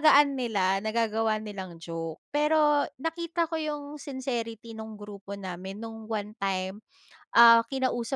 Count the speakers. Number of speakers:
one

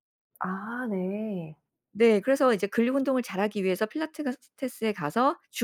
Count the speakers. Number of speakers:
two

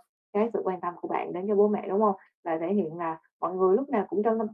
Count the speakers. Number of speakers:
one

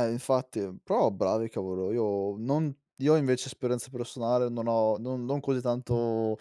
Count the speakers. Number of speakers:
one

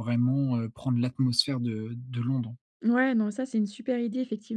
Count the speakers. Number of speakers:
two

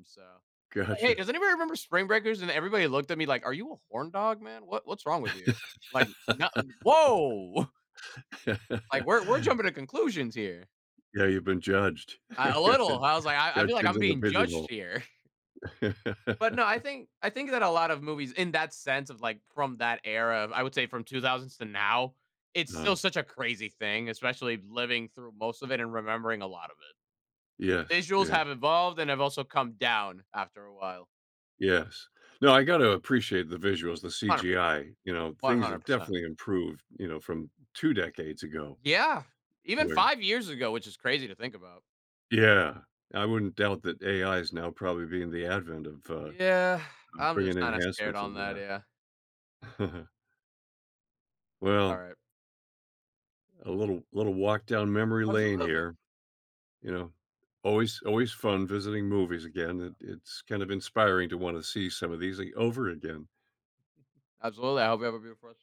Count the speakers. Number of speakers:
two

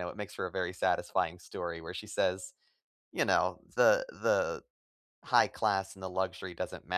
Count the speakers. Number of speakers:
one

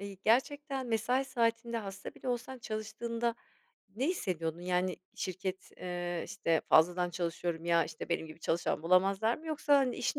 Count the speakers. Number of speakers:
one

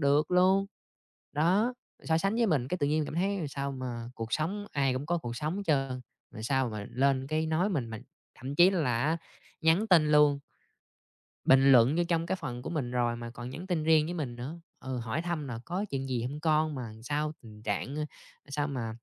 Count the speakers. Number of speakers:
one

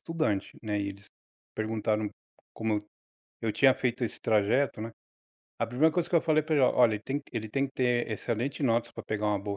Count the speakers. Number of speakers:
one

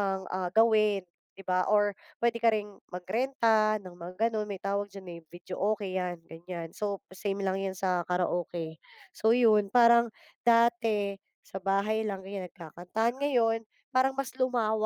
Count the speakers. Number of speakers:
one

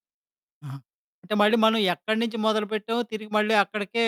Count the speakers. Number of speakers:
one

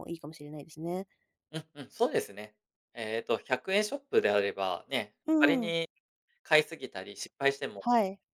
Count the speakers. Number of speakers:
two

